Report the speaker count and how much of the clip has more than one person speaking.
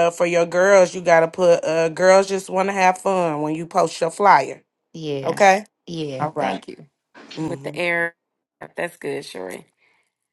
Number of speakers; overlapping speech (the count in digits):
3, about 8%